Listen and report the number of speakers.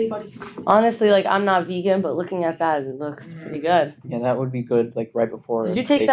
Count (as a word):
three